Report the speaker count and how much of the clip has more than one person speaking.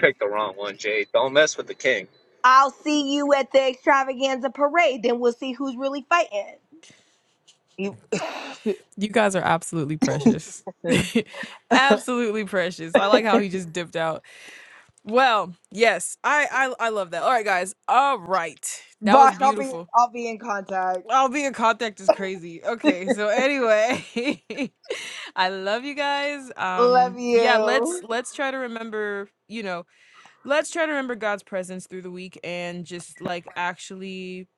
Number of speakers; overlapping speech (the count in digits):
3, about 6%